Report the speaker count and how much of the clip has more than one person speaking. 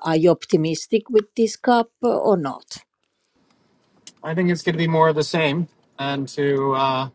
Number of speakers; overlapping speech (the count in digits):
2, no overlap